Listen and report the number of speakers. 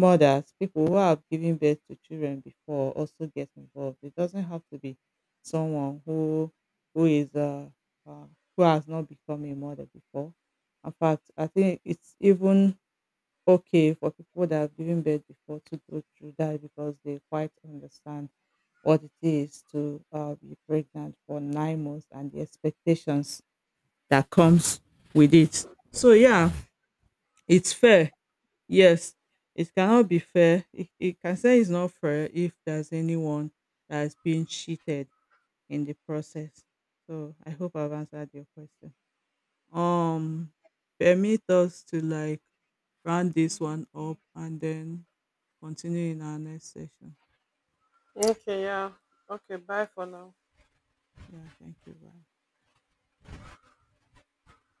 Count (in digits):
2